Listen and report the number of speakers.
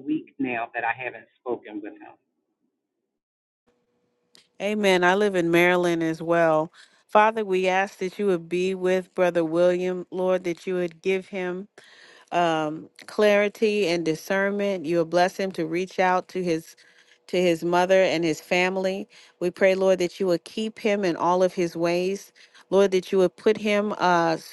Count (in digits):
2